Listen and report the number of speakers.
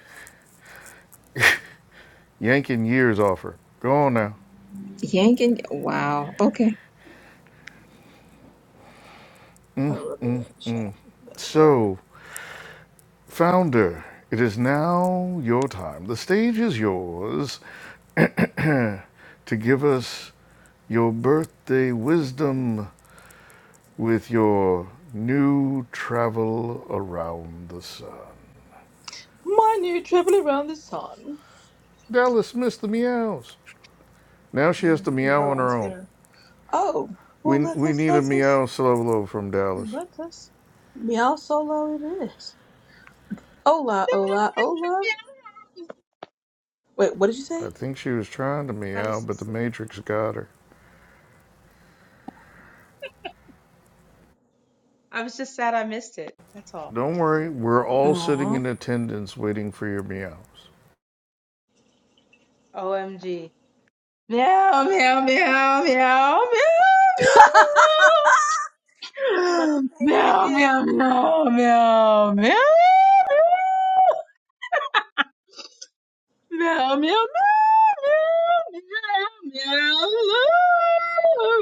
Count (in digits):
4